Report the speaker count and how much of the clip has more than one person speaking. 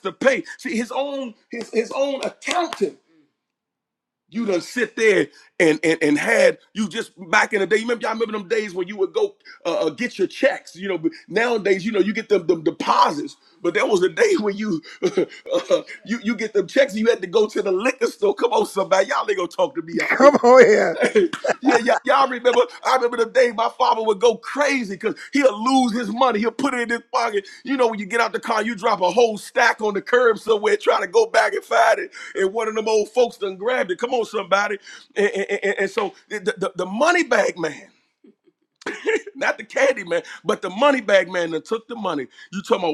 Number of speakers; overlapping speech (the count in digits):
2, about 1%